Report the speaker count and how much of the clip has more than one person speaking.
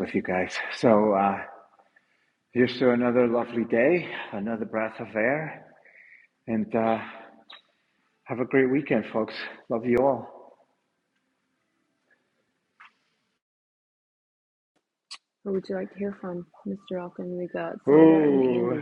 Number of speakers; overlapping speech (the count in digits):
2, about 5%